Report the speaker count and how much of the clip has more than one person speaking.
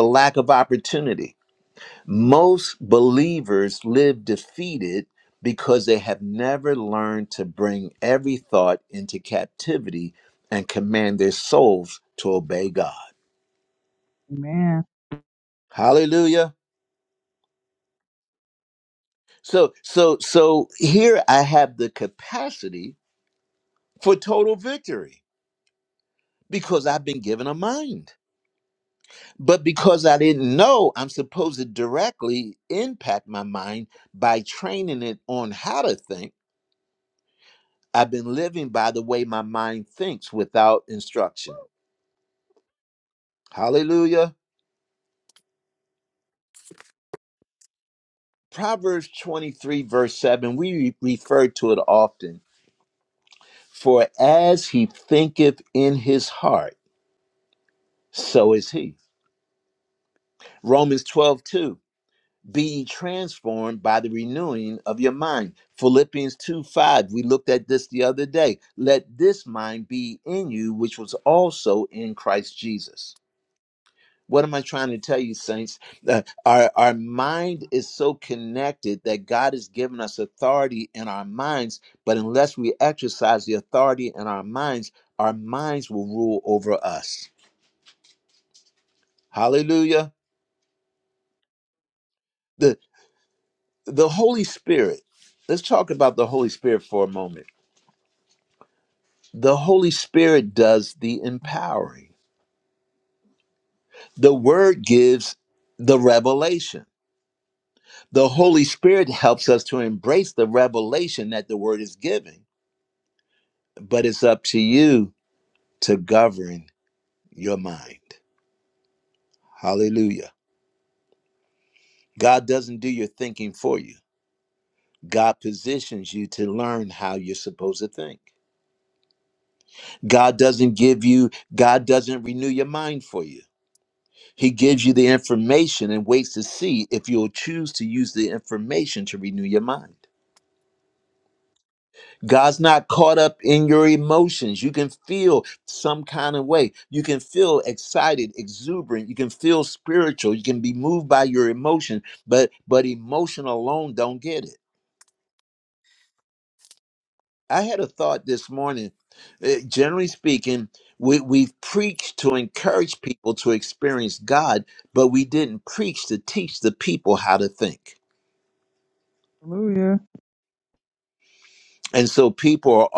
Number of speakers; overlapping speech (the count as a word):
two, no overlap